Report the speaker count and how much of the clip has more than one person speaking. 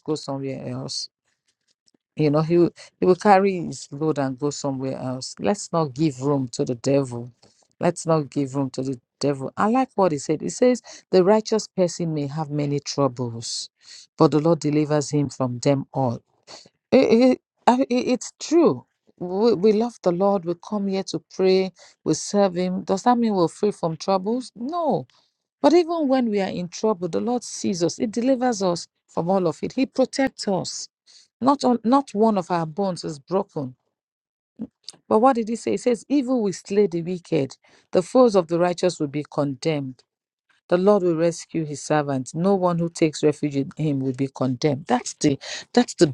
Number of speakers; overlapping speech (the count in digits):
1, no overlap